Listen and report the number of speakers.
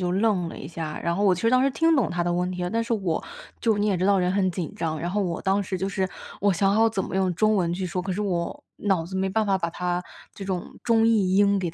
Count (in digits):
1